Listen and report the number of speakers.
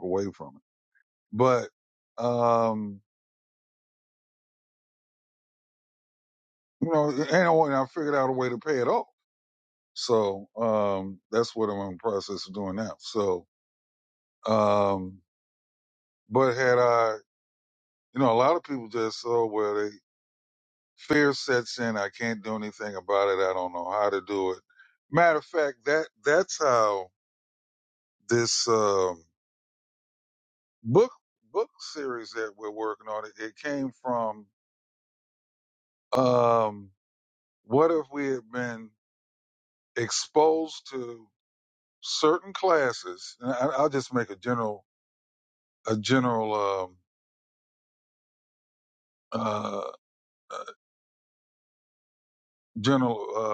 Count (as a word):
one